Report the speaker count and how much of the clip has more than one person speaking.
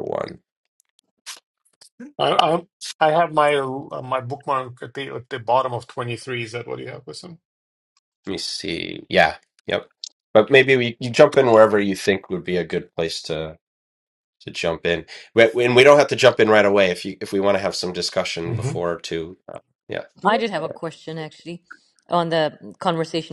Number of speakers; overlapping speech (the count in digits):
3, about 1%